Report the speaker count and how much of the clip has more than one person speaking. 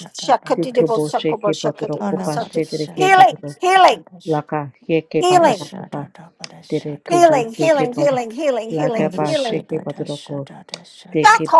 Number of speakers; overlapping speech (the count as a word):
three, about 64%